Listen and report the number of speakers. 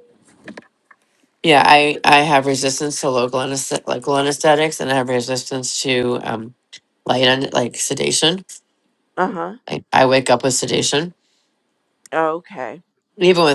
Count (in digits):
2